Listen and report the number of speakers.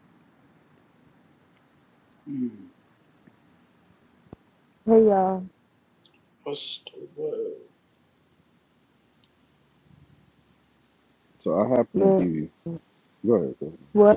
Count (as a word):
three